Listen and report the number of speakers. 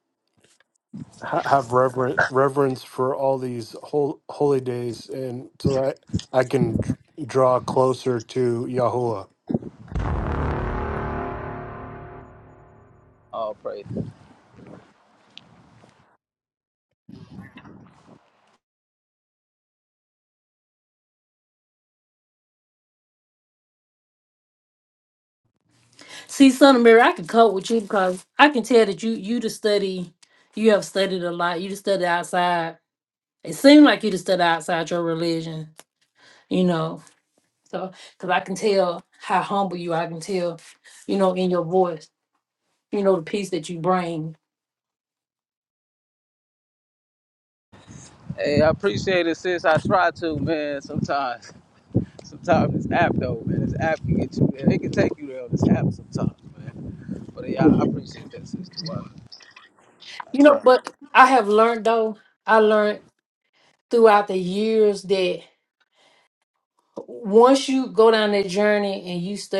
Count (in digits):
3